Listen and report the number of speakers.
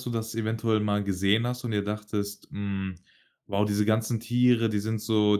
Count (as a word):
one